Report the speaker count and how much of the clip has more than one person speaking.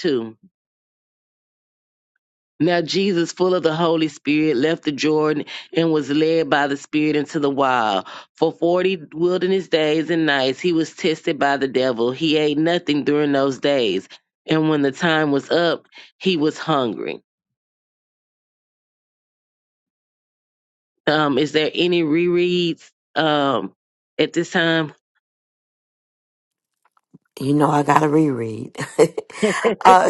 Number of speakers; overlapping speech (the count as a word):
two, no overlap